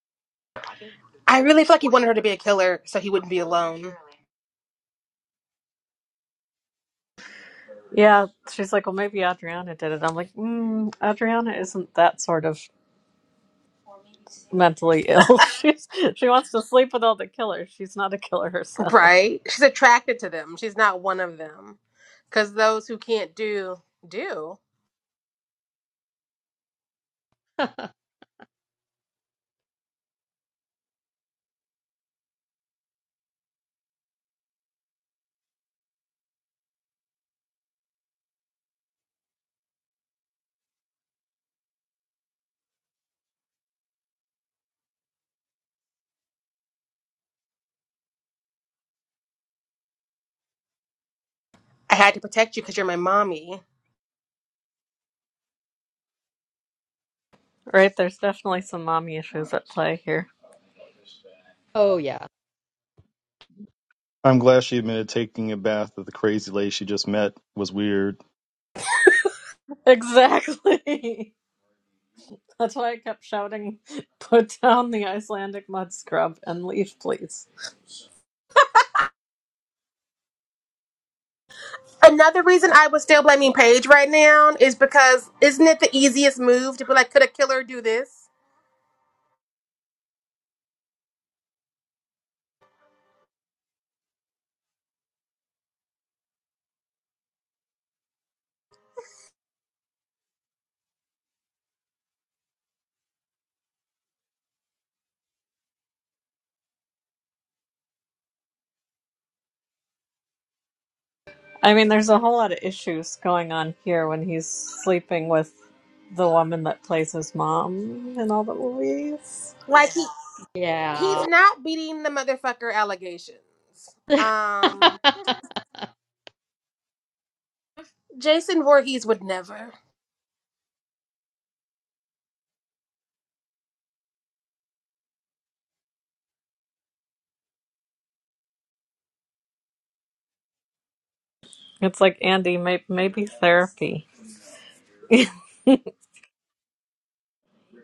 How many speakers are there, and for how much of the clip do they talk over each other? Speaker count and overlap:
four, about 1%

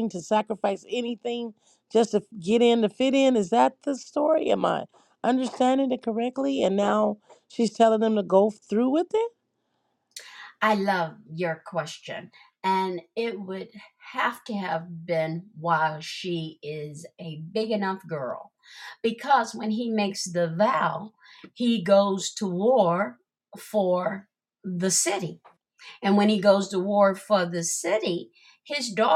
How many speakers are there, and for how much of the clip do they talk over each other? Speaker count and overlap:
two, no overlap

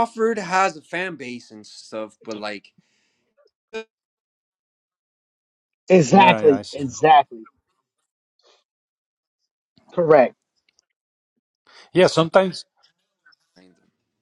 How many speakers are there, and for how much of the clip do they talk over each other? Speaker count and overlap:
three, about 4%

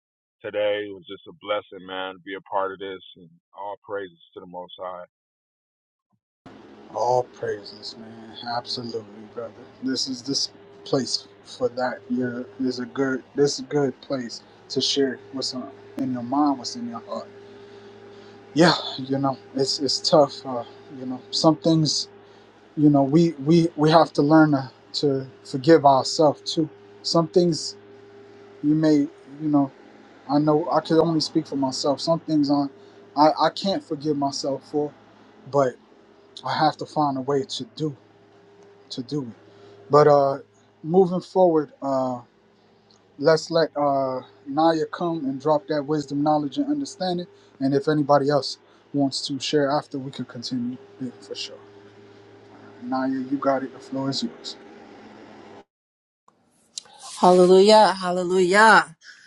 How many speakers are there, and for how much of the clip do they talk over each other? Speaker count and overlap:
three, no overlap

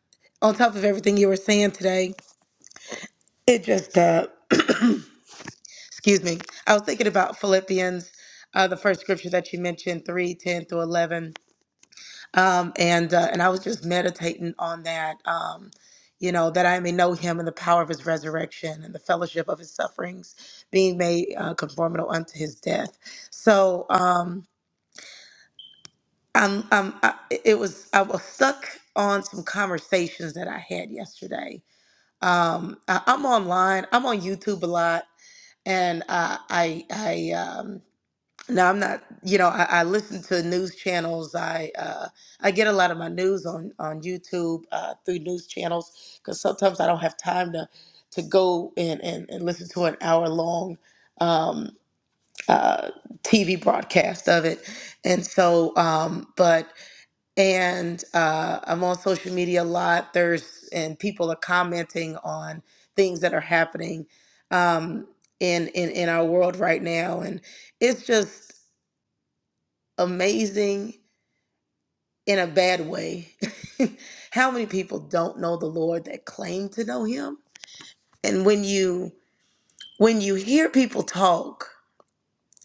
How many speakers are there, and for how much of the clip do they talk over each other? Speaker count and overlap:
one, no overlap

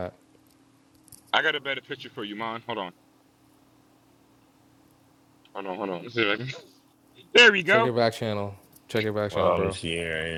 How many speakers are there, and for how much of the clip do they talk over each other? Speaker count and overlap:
three, about 6%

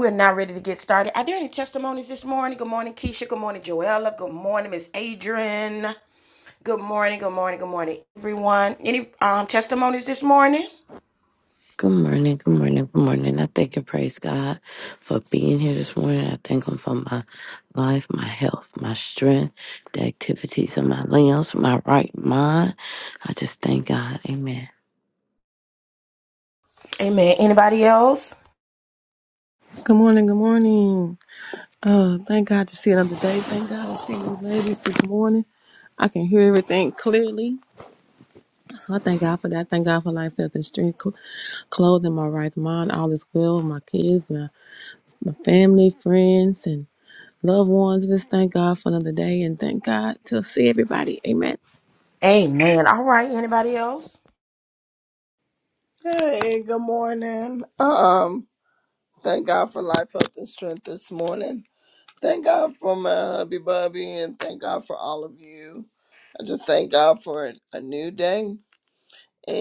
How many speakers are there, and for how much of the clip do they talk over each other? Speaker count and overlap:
four, no overlap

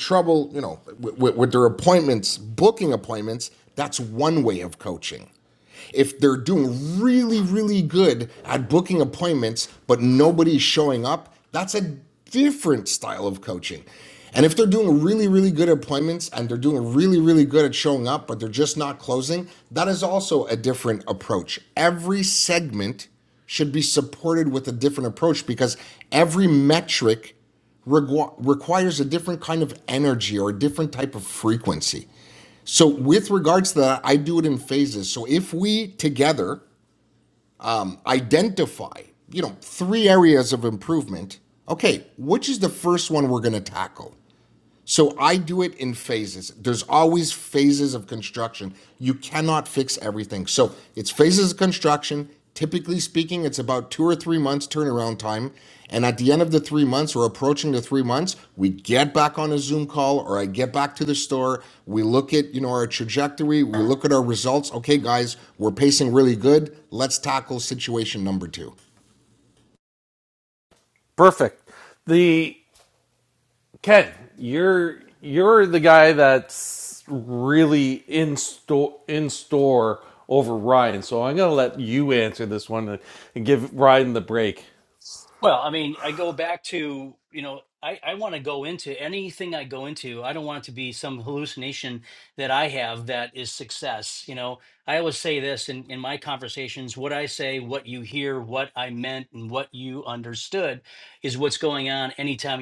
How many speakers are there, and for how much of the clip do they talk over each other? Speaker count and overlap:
three, no overlap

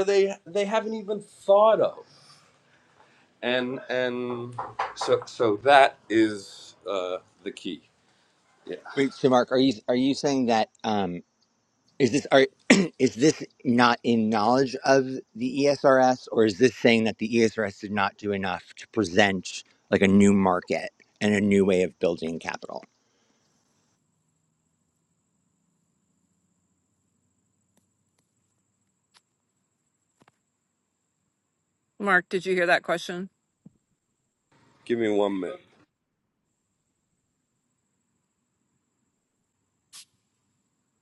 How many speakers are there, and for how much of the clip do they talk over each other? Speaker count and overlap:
three, no overlap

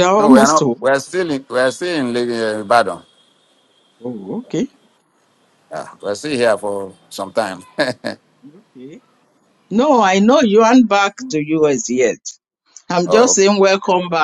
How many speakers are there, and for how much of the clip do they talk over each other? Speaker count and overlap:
two, about 6%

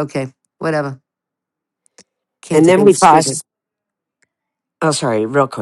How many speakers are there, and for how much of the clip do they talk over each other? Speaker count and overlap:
two, about 13%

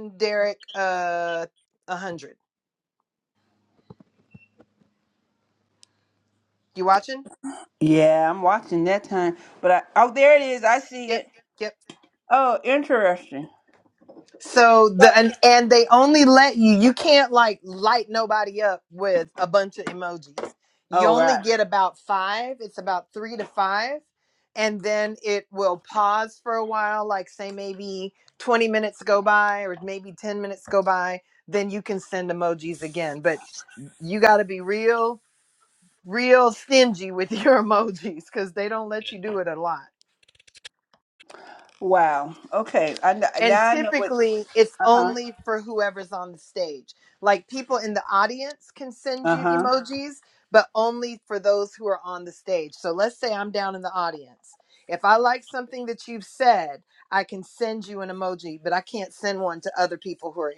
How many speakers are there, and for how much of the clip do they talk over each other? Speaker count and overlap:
two, about 4%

